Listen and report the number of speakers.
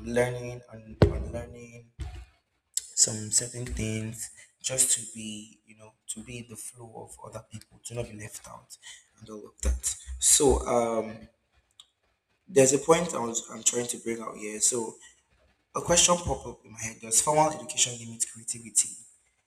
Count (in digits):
1